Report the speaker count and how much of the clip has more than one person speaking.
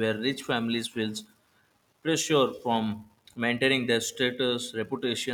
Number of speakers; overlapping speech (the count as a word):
one, no overlap